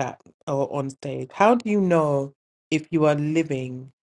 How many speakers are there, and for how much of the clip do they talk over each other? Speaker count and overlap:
1, no overlap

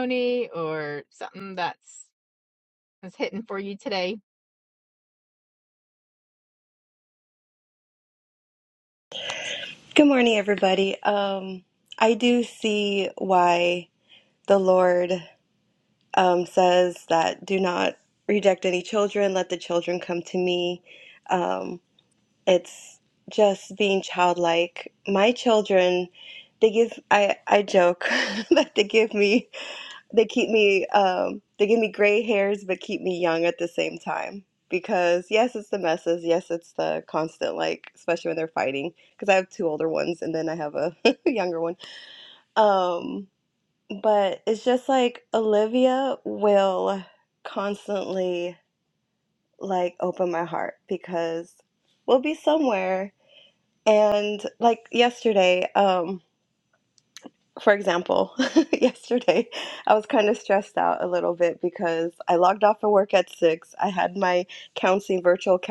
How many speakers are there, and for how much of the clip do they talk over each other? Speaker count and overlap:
2, no overlap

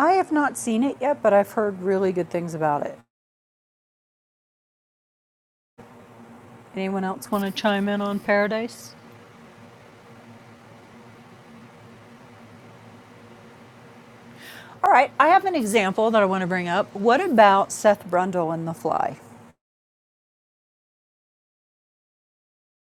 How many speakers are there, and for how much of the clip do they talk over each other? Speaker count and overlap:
1, no overlap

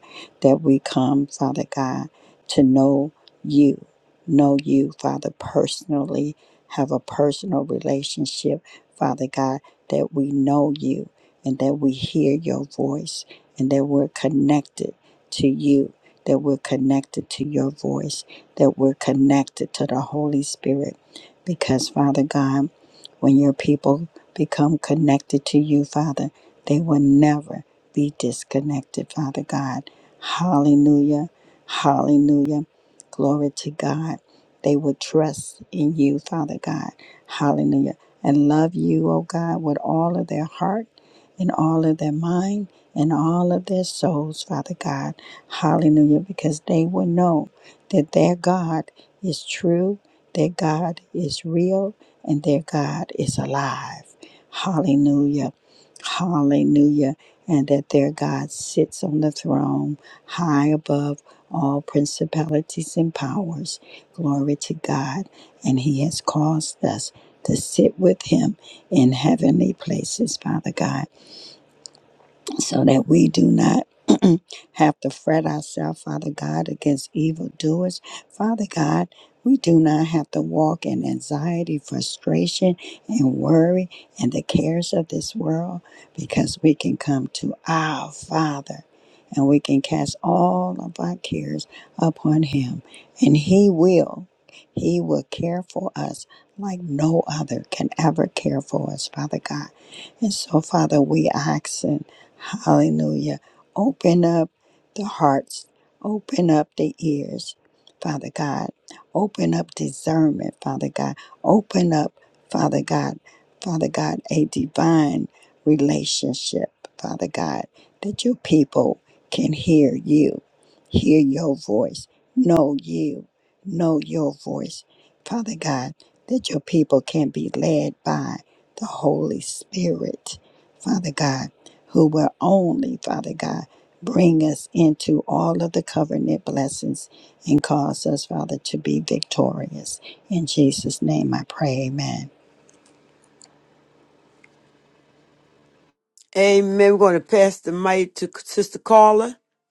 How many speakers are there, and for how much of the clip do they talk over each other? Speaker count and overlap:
2, no overlap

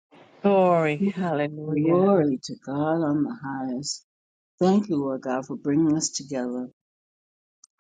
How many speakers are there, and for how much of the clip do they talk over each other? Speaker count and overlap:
2, about 5%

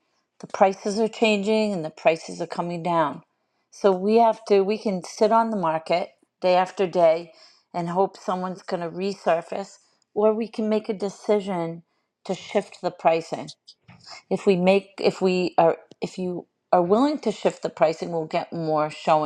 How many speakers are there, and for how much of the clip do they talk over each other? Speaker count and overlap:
1, no overlap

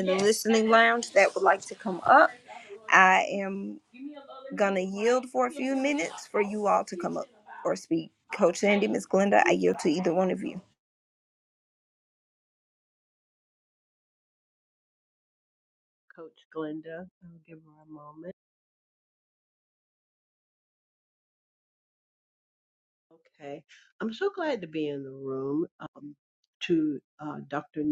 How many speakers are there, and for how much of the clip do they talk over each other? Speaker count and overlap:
2, no overlap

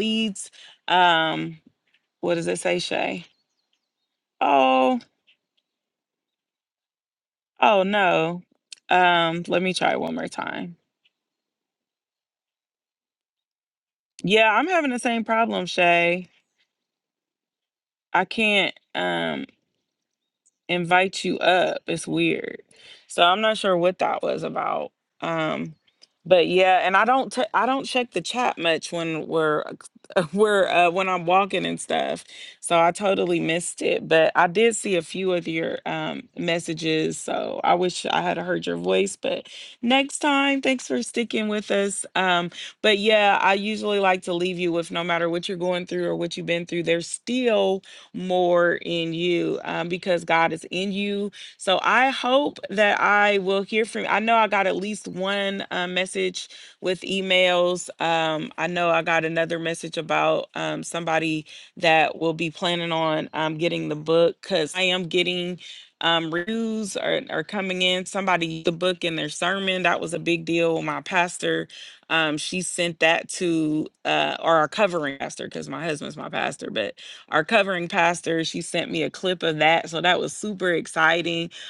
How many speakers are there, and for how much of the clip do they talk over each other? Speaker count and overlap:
1, no overlap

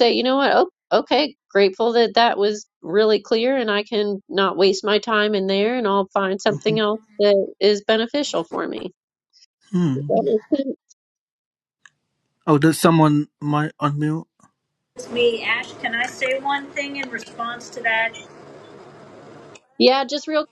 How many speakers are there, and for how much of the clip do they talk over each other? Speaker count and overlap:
3, about 2%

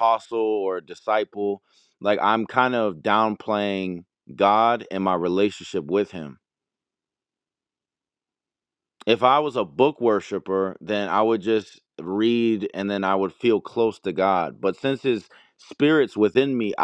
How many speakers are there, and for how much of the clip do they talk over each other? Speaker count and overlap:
1, no overlap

